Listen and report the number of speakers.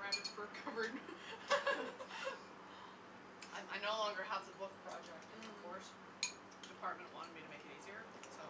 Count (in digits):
2